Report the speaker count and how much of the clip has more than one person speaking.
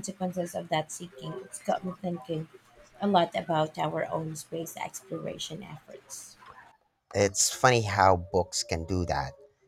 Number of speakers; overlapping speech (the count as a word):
two, no overlap